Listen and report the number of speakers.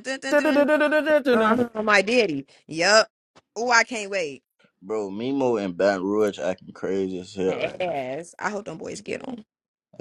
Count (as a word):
three